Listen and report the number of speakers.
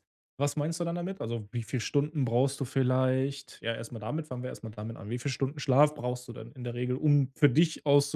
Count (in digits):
1